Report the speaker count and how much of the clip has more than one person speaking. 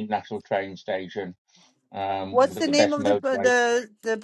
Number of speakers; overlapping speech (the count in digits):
2, about 28%